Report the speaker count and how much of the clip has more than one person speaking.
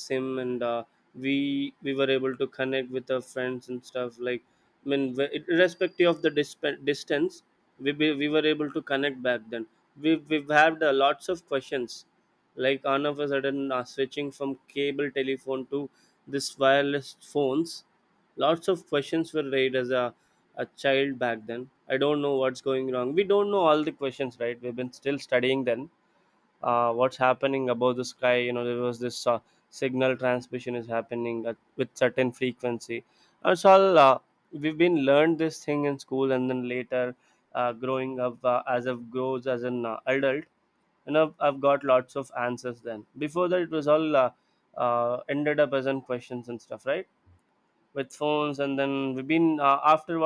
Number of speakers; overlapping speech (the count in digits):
1, no overlap